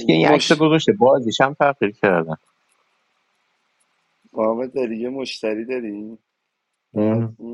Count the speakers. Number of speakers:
2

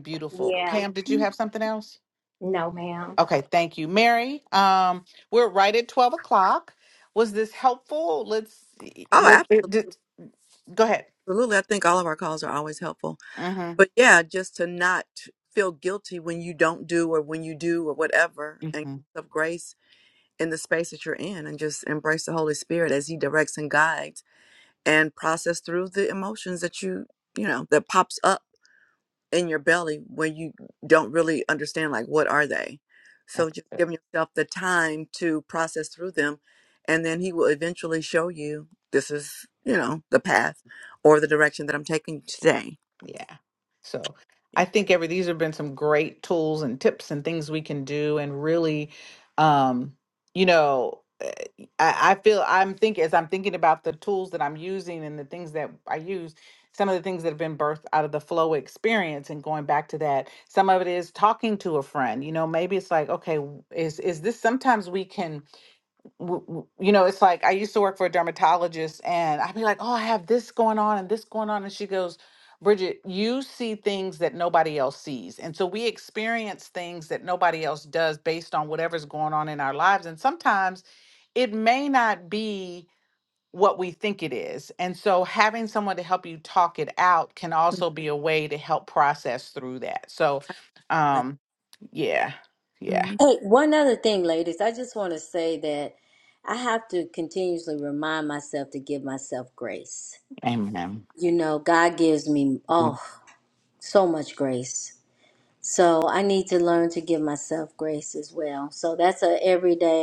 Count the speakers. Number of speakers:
4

